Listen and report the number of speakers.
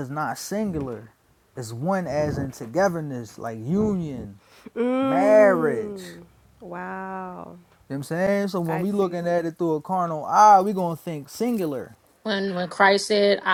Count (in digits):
3